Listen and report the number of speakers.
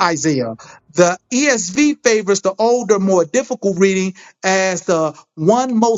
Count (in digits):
1